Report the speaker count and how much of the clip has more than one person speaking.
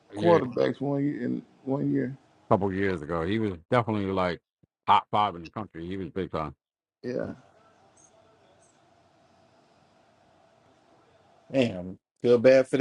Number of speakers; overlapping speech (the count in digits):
3, about 4%